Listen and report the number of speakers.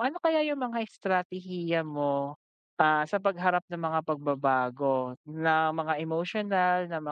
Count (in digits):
1